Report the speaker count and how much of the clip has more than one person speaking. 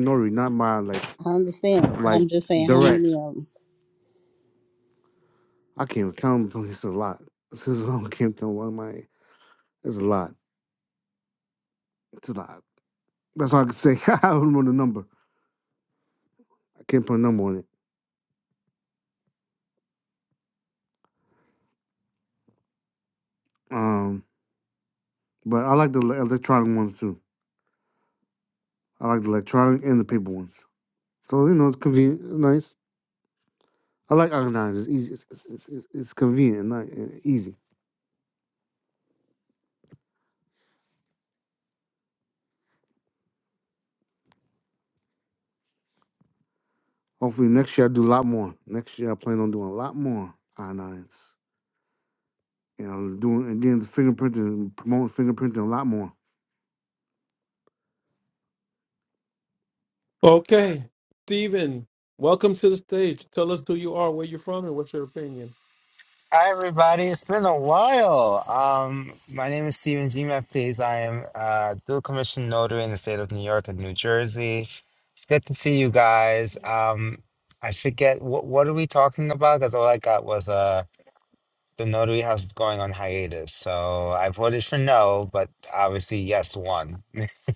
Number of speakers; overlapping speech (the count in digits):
4, about 1%